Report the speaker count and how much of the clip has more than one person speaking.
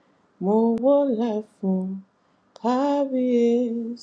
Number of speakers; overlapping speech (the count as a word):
one, no overlap